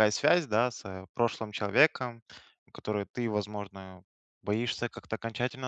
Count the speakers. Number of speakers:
1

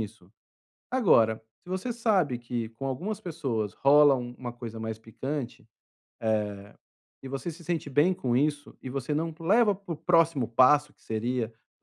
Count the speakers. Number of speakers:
1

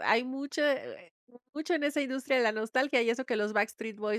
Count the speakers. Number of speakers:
1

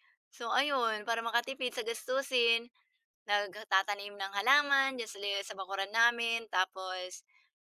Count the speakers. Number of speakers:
1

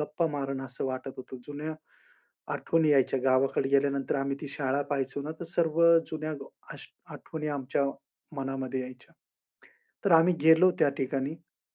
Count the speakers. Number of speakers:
1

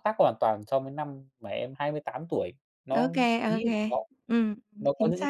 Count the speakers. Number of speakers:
2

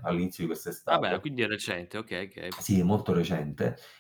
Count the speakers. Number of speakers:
2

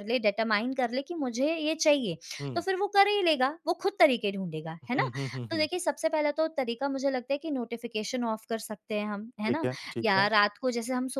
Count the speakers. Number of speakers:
2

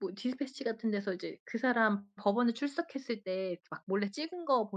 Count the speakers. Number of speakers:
1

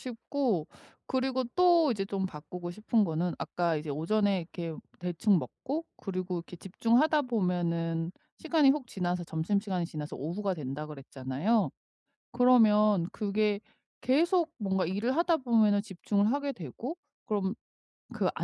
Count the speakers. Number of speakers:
1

